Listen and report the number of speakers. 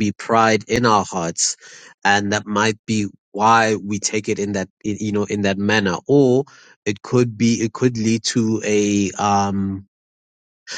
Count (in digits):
1